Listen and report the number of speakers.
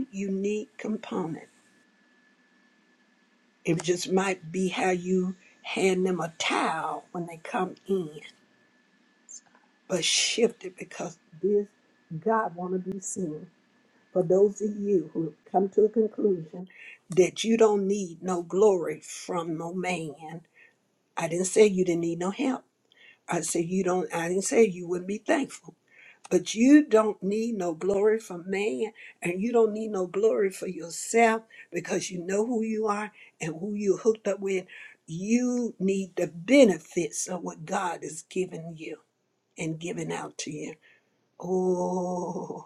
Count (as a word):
one